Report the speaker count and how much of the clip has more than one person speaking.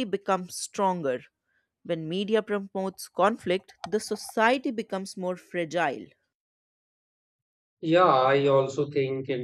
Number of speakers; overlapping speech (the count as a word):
two, no overlap